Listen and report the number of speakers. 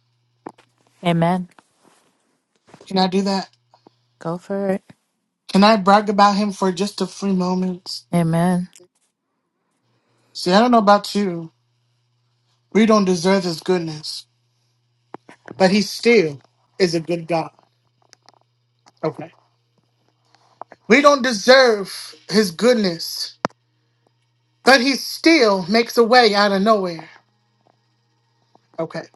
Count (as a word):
two